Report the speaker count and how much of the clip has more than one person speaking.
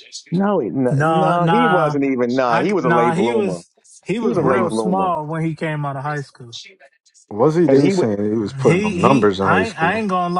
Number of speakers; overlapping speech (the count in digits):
3, about 48%